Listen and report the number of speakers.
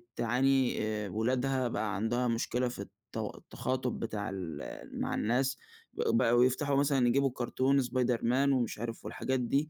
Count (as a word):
one